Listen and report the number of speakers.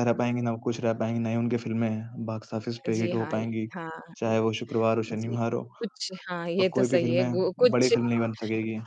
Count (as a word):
two